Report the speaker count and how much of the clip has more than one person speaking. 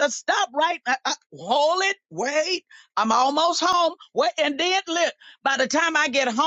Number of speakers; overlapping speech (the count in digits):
1, no overlap